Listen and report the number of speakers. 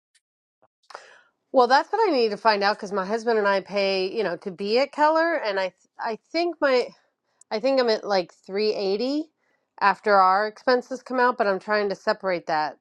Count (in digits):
1